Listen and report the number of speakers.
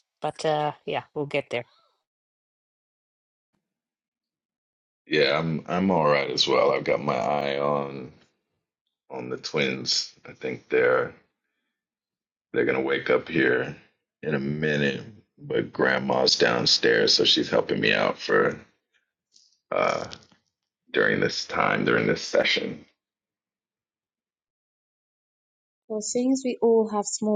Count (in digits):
3